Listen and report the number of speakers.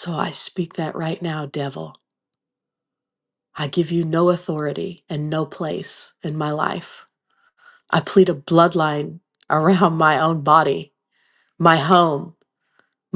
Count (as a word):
one